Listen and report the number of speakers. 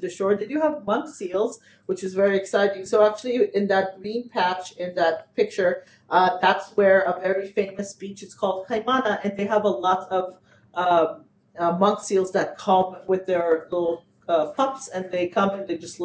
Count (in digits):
1